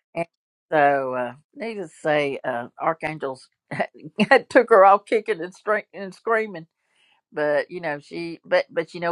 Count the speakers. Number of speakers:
one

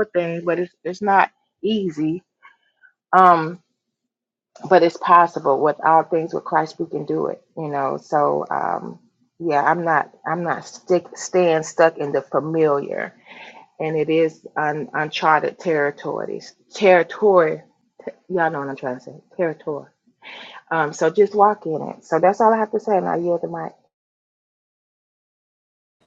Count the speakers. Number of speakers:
one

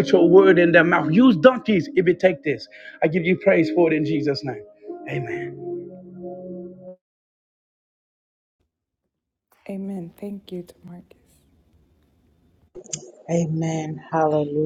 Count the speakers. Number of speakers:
three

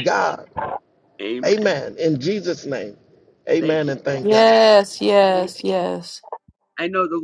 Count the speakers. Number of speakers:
three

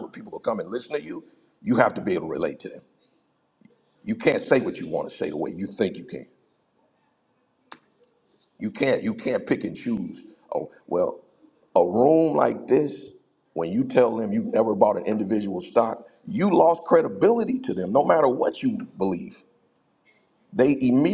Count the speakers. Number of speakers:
one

